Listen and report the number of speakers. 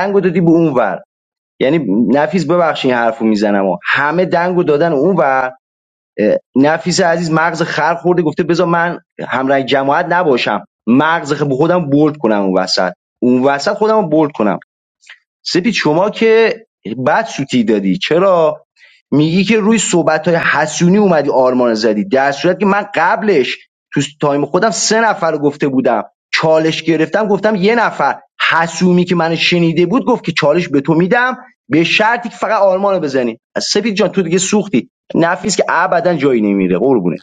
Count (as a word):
one